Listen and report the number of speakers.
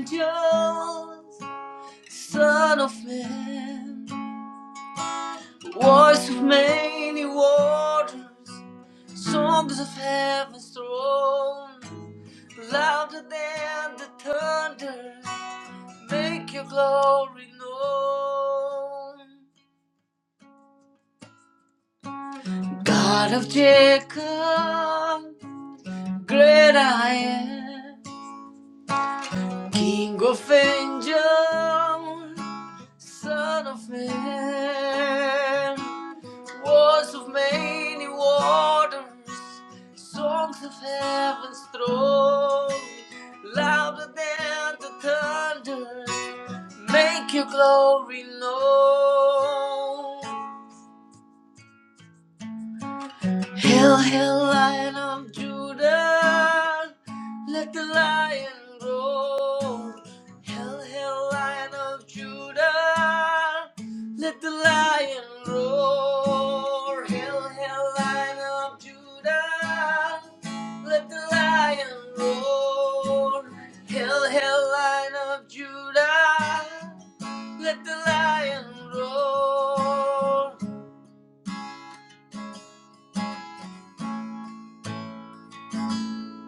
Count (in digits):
1